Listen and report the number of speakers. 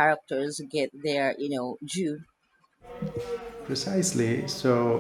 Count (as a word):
two